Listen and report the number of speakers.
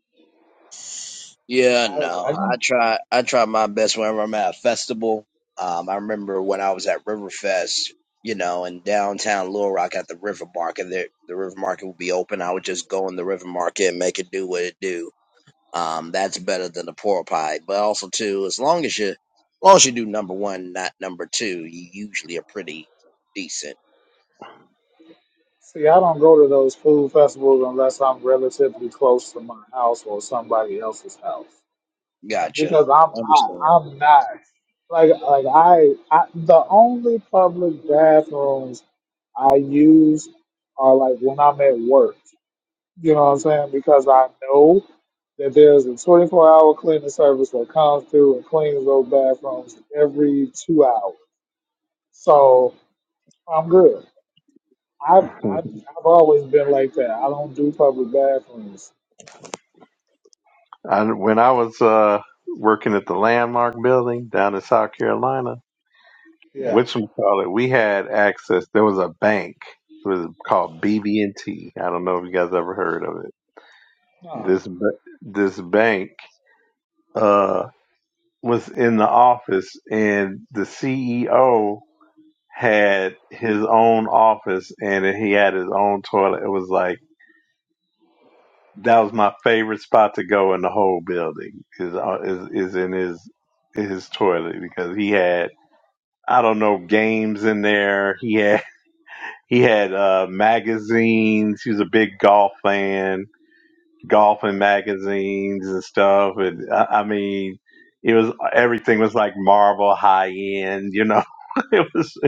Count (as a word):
three